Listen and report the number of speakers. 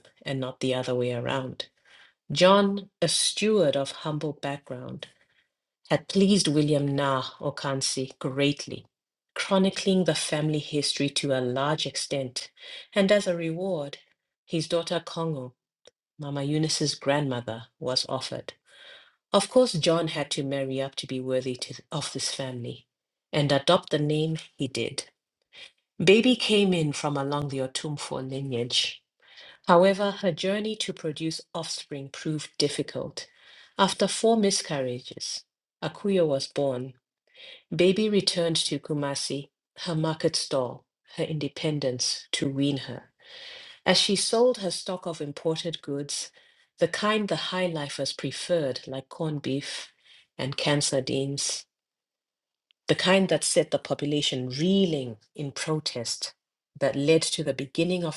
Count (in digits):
1